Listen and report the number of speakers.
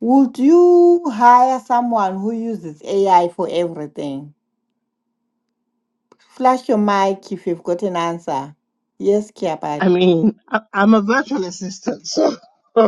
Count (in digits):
2